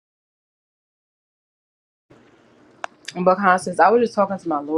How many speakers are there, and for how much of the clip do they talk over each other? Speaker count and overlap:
1, no overlap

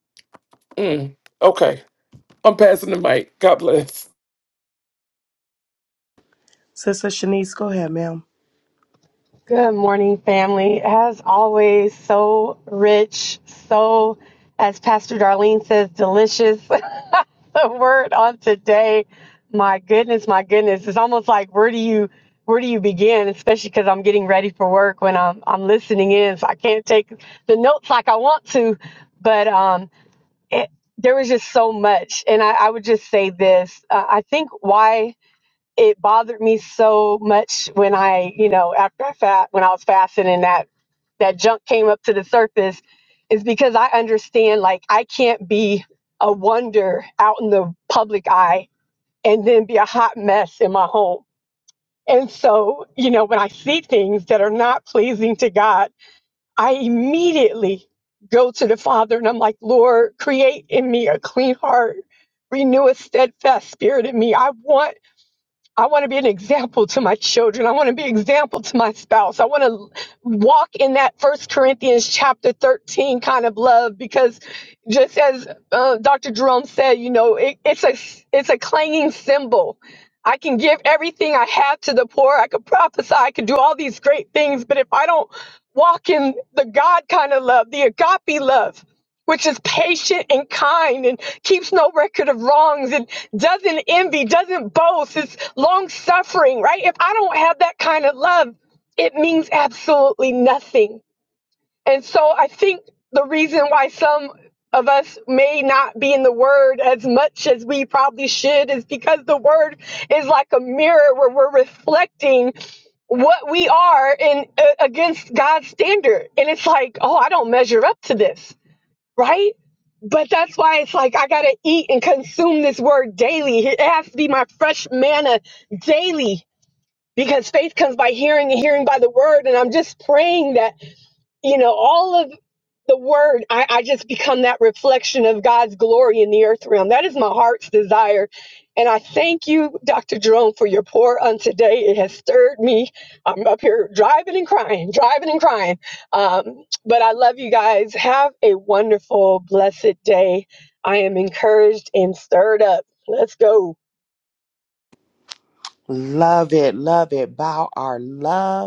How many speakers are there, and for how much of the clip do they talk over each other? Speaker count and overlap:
3, no overlap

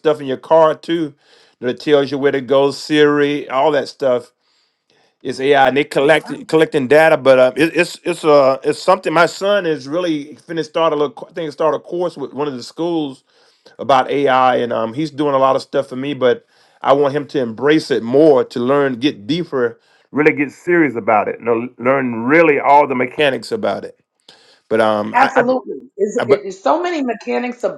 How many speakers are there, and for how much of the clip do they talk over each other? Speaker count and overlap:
2, about 2%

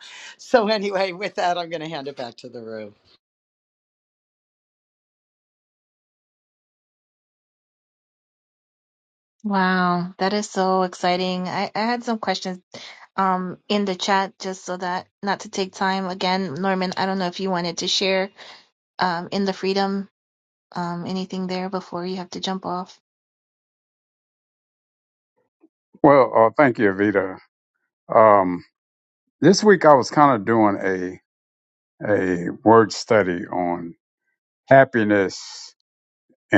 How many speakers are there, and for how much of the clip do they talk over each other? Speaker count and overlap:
3, no overlap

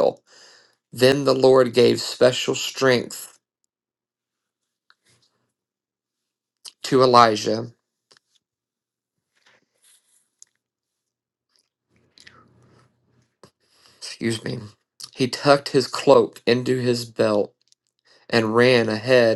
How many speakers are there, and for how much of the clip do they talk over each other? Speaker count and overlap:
1, no overlap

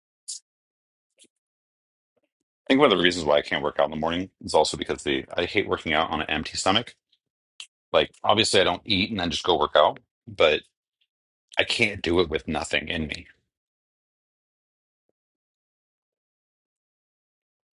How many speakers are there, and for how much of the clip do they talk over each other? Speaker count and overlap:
1, no overlap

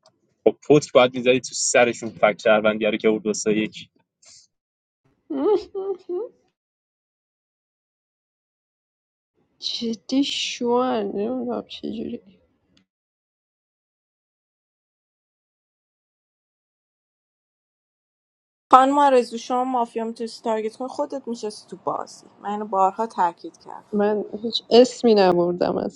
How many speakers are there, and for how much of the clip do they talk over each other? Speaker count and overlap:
3, no overlap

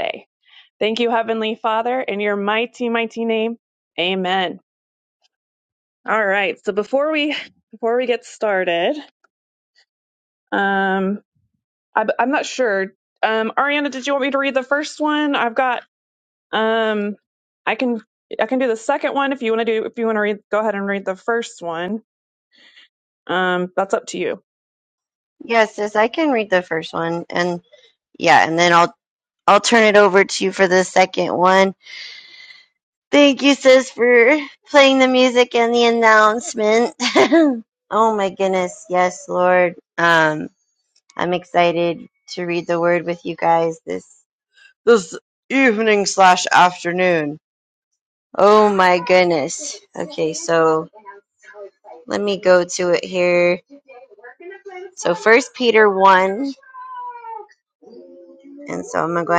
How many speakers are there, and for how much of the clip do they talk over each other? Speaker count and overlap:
2, no overlap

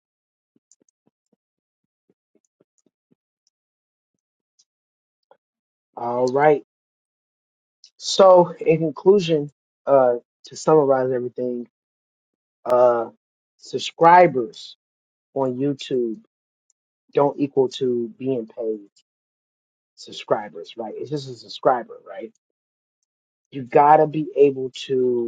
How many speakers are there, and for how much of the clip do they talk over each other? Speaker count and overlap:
1, no overlap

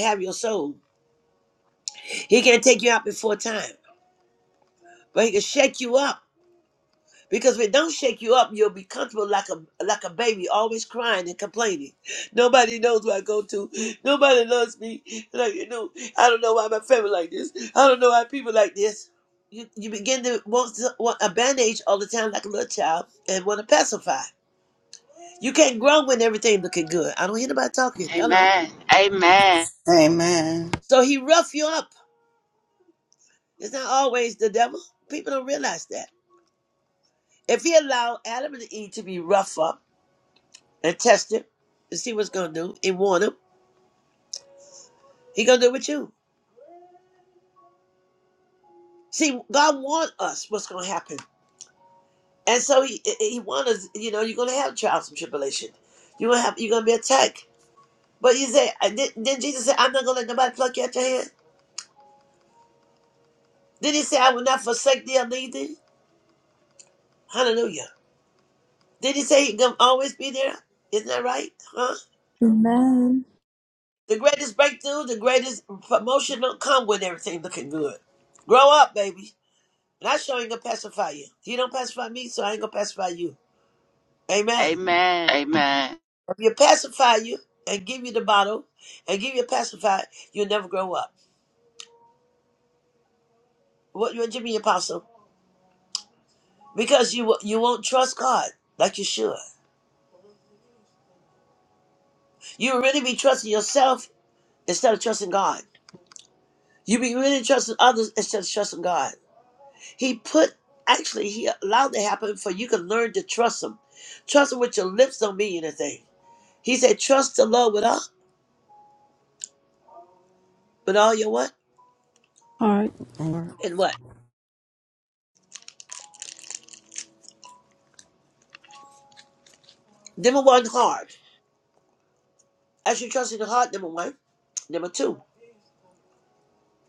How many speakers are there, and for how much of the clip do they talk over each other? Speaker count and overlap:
4, under 1%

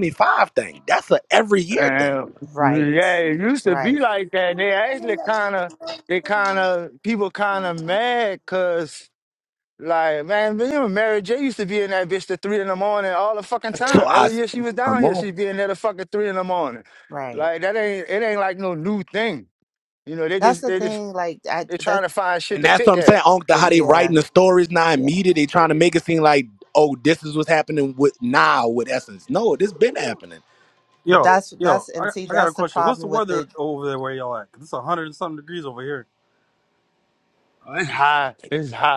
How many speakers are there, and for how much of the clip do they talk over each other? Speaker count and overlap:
4, about 17%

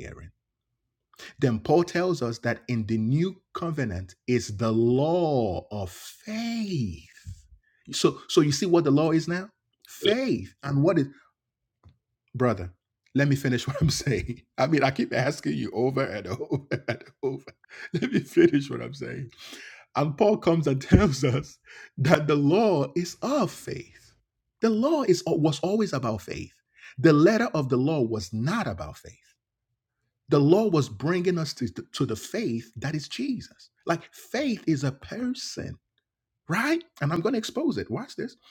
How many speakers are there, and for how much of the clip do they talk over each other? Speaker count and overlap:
1, no overlap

